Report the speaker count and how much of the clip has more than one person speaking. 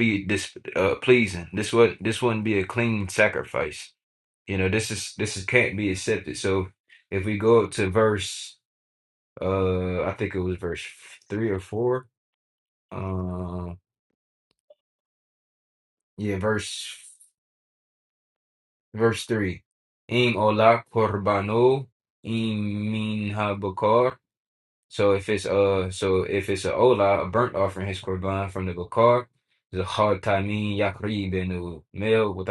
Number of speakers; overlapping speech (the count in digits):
1, no overlap